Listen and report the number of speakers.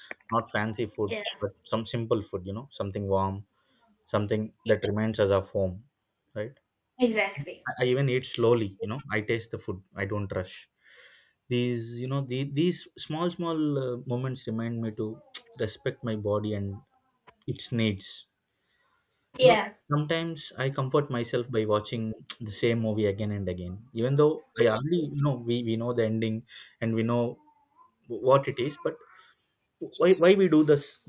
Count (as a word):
two